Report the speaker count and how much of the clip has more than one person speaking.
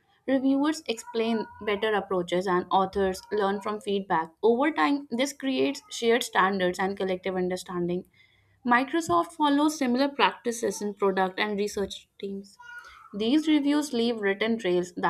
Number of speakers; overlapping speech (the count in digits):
1, no overlap